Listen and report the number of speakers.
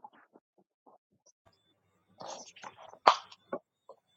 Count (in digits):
0